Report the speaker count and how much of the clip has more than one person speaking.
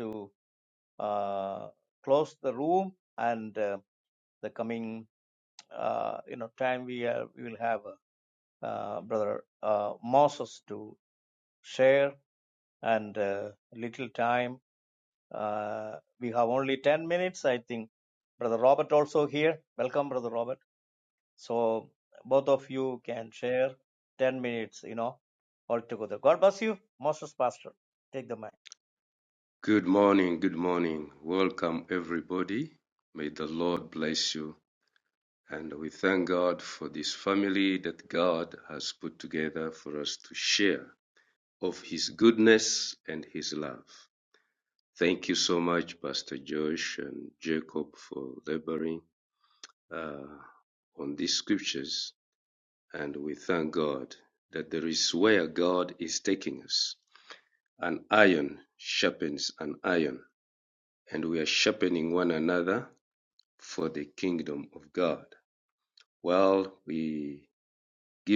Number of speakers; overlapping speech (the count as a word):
two, no overlap